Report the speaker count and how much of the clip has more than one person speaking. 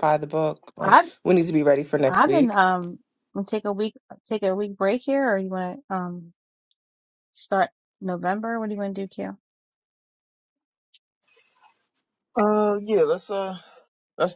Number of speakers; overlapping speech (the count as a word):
three, about 5%